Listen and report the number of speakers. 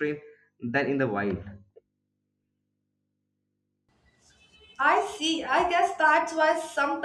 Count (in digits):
2